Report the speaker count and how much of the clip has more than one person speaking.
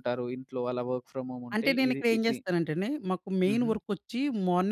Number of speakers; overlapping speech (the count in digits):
2, about 25%